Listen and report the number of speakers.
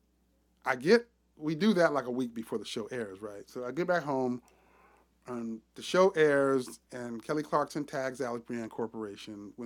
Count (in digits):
1